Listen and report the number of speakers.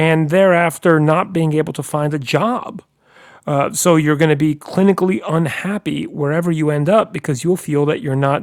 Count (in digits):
1